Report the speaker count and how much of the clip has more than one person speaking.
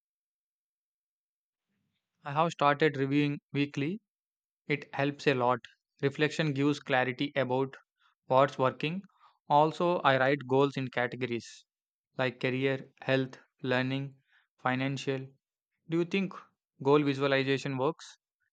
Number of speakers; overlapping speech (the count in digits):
1, no overlap